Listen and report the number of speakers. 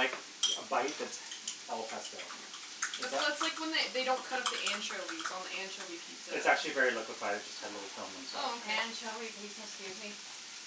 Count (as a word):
three